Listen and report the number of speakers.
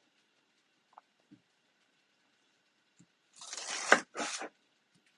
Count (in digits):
0